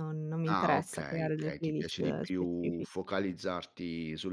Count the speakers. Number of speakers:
2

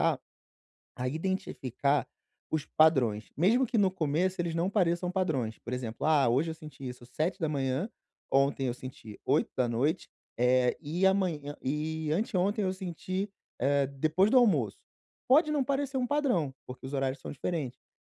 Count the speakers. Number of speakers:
1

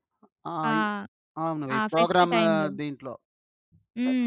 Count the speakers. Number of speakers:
2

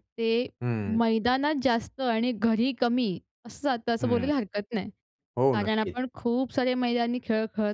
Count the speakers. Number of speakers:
2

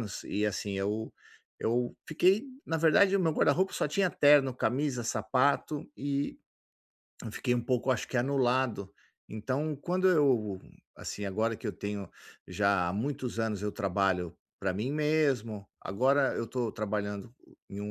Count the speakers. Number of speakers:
1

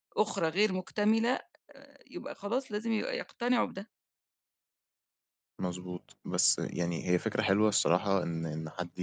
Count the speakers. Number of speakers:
2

